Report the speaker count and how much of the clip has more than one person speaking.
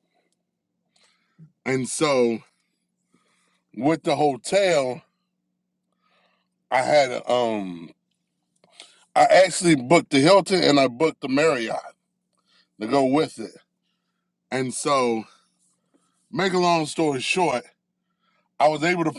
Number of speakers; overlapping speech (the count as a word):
one, no overlap